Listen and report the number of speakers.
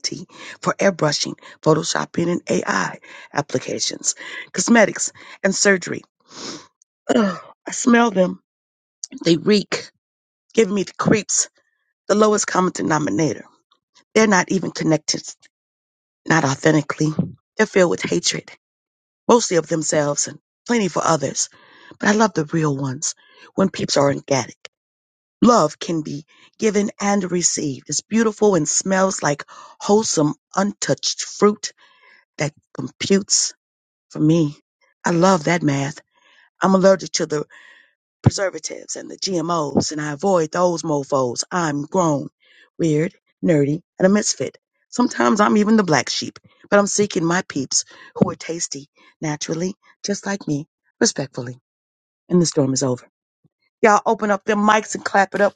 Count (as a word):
one